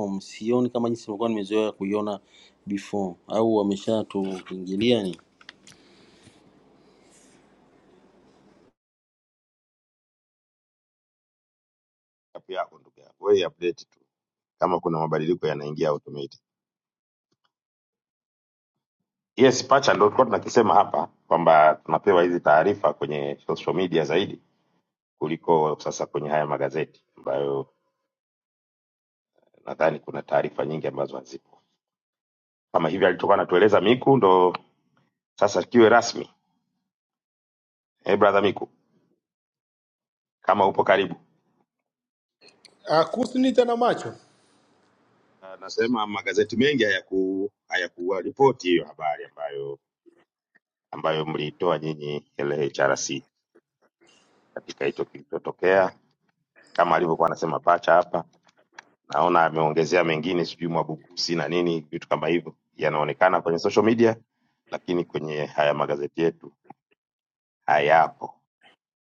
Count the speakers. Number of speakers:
3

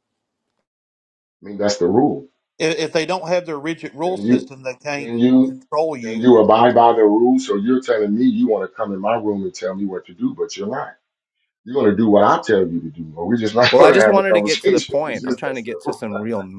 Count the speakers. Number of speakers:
3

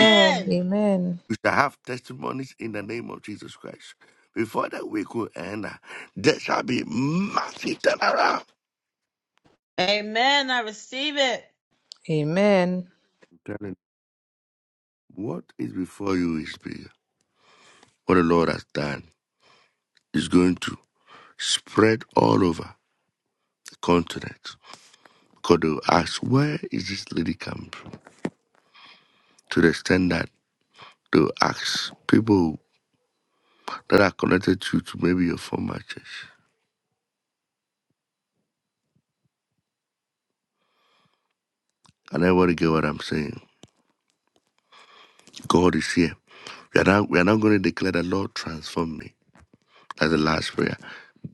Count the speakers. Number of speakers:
3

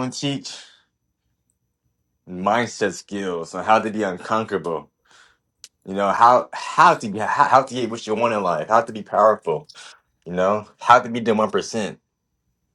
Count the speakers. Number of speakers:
1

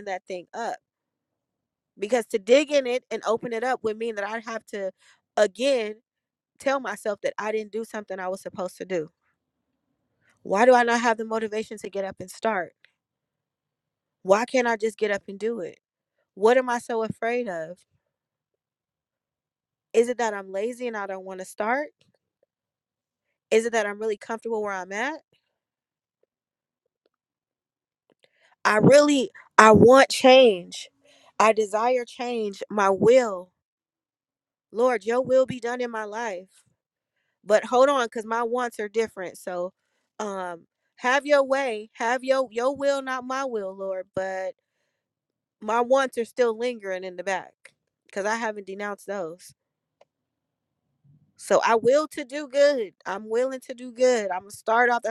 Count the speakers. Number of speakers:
1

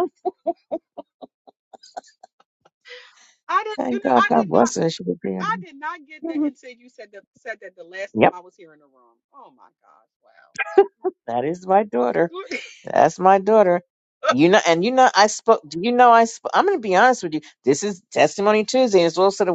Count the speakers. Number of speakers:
2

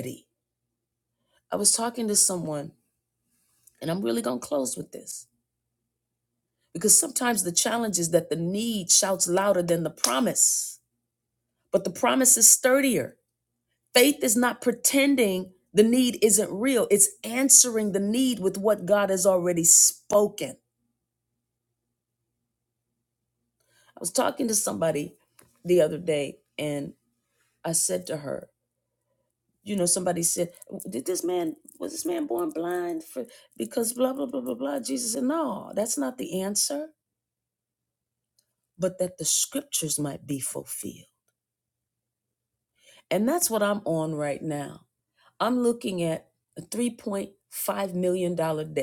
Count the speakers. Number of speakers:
1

